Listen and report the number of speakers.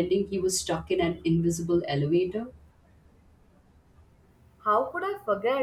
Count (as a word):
two